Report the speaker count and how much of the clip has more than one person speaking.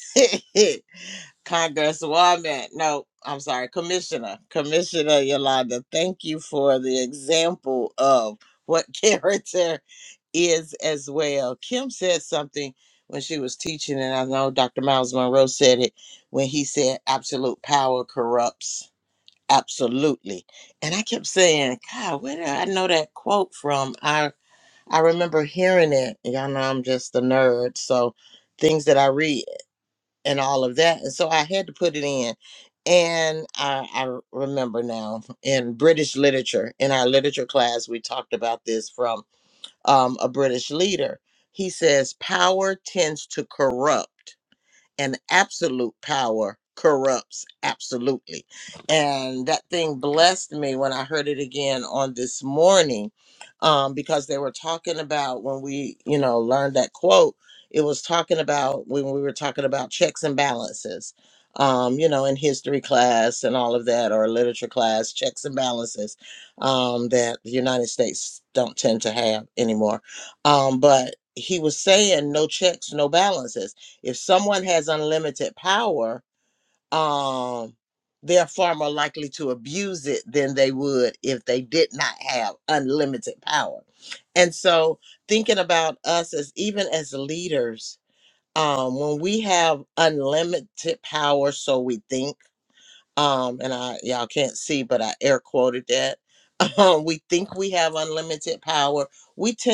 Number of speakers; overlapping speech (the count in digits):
1, no overlap